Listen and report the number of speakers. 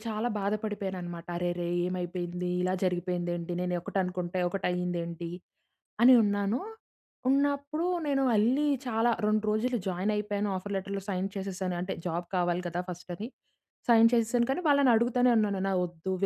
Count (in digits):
1